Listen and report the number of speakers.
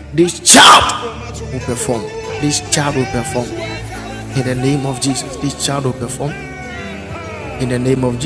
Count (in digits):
1